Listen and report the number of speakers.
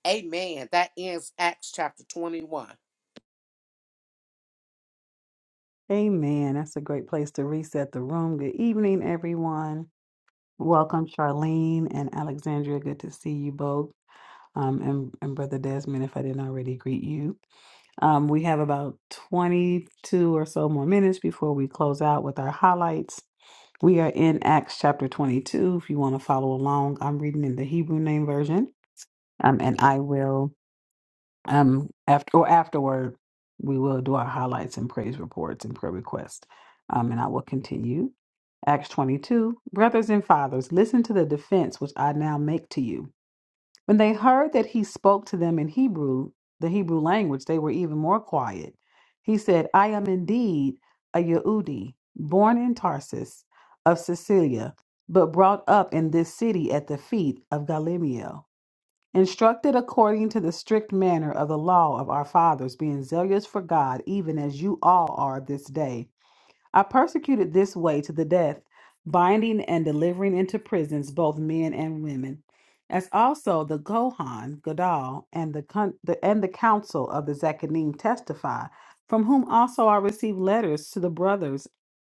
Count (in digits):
2